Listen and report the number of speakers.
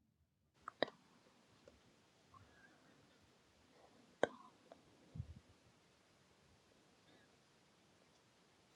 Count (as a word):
zero